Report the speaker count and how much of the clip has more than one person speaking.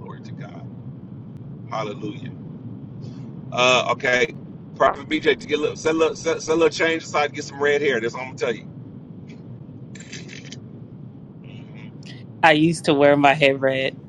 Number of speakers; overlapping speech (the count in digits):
2, no overlap